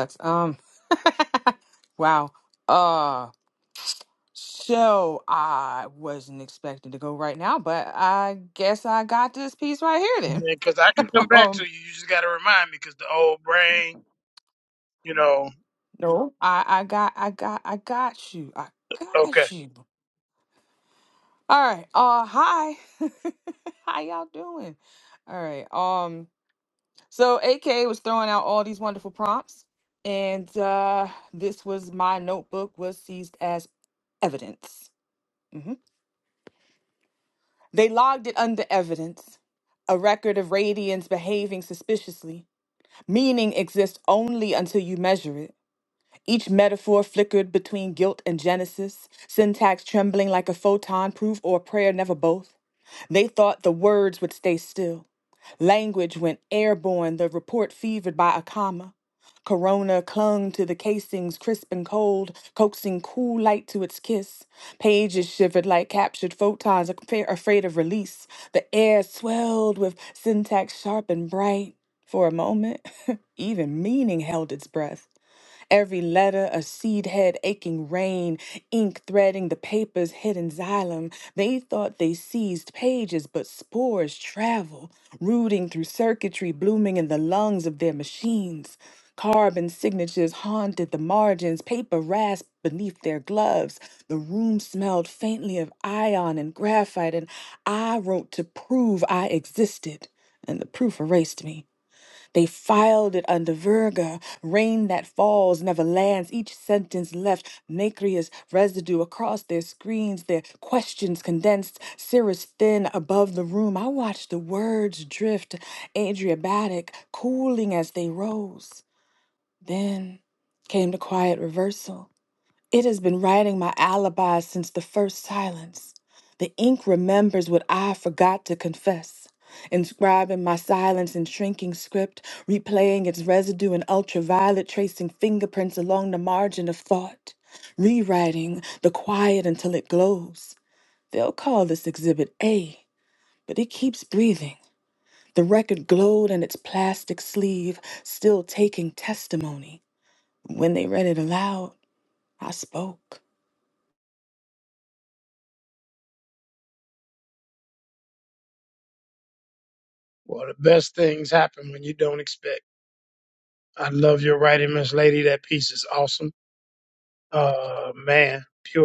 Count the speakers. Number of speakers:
2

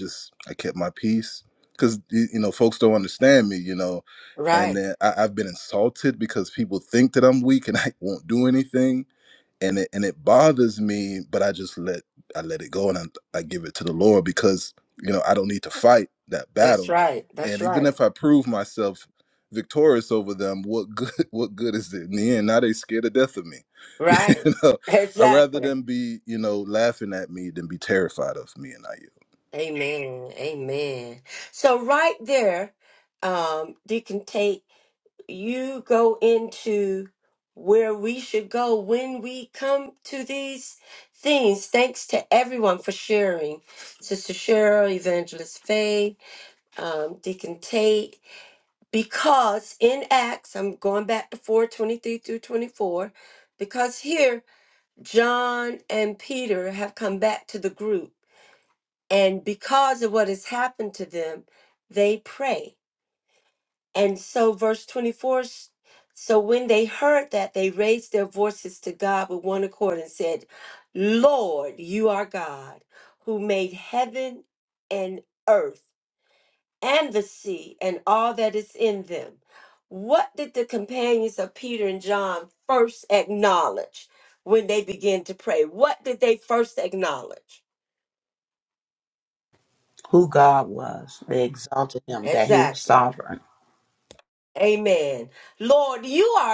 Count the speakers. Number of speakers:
3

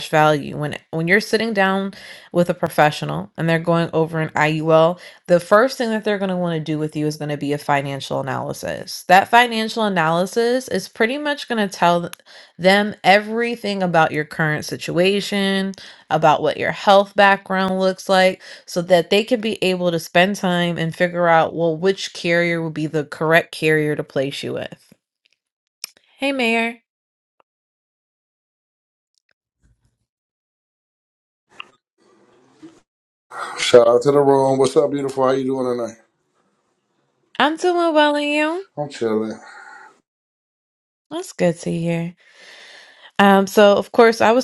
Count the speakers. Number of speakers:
2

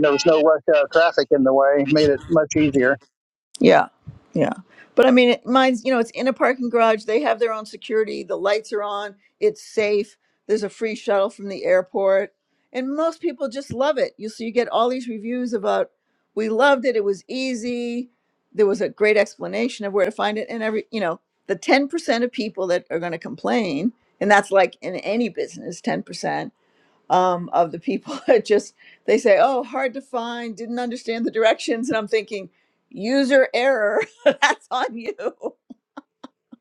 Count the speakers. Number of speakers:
2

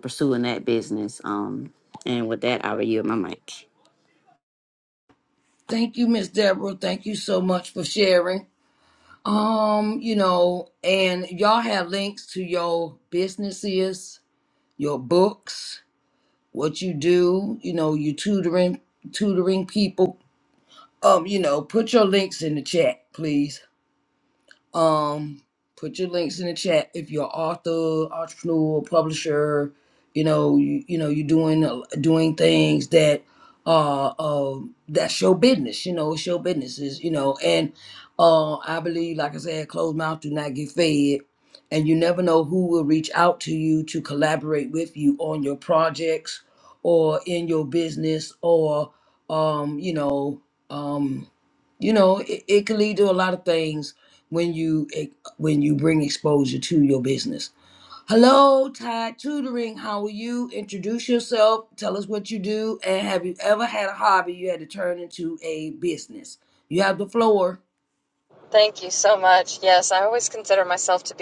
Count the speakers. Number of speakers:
3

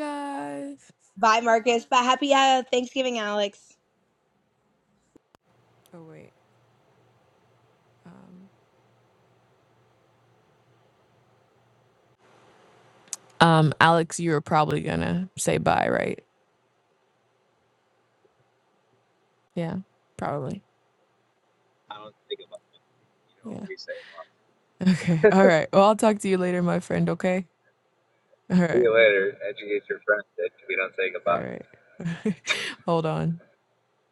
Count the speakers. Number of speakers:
3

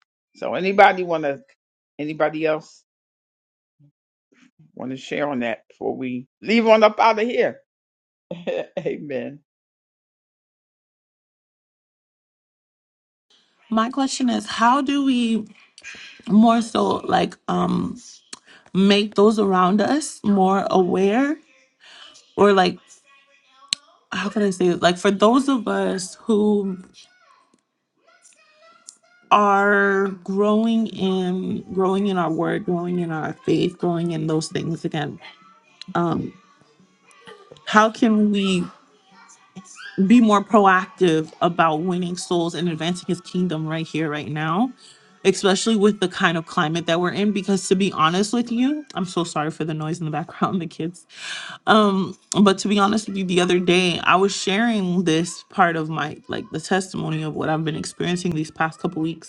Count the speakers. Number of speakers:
2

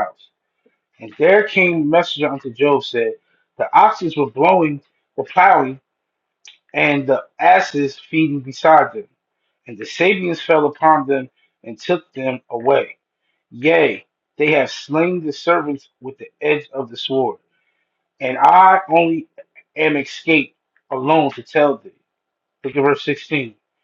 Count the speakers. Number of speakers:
1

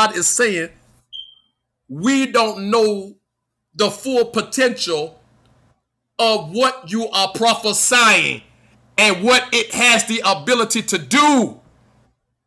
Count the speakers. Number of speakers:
1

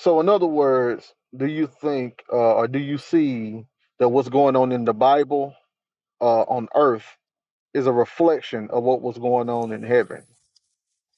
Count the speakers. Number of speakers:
1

